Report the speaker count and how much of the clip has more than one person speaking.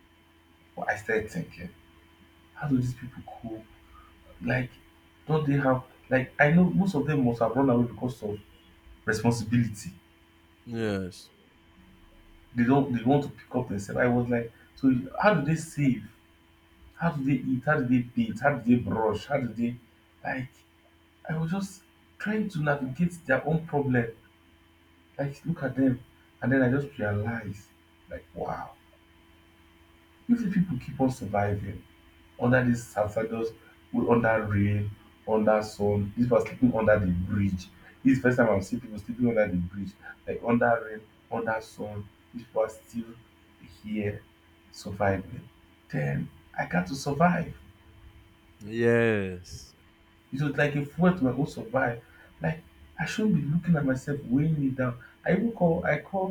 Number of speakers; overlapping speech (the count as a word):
two, no overlap